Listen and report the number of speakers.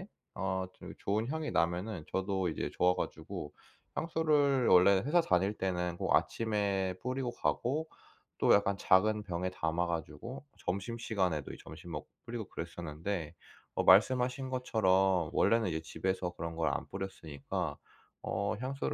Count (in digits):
1